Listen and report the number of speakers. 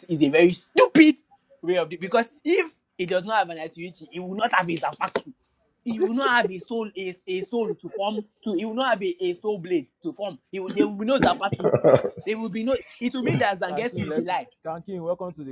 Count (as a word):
two